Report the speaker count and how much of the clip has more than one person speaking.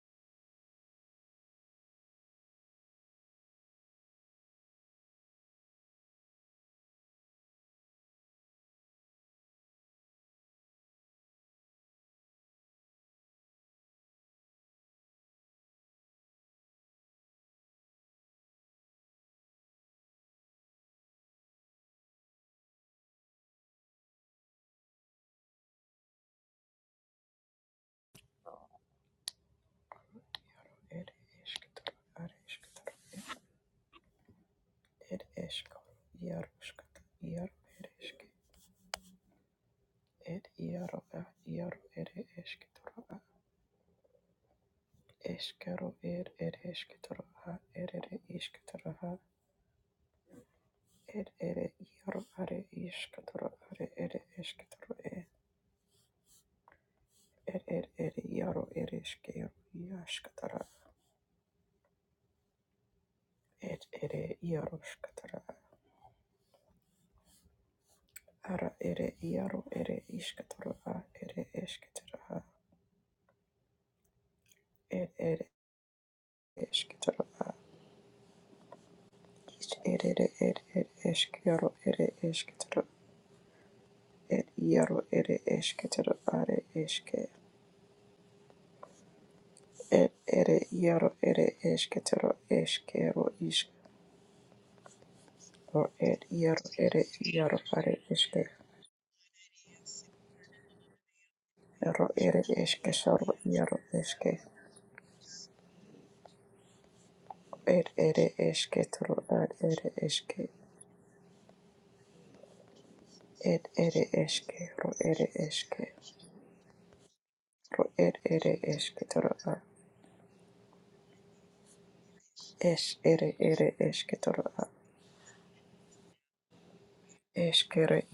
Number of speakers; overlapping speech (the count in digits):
1, no overlap